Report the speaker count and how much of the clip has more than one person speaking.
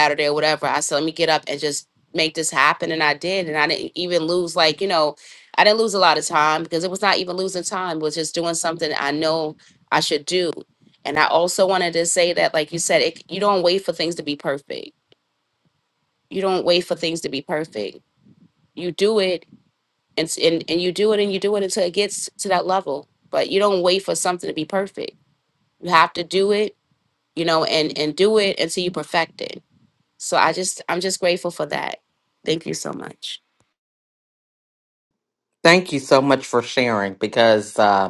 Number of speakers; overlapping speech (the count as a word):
two, no overlap